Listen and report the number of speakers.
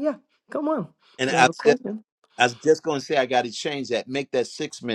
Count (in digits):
2